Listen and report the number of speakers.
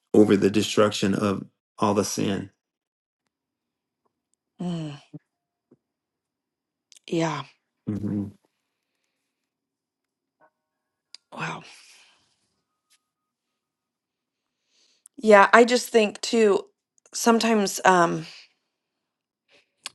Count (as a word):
two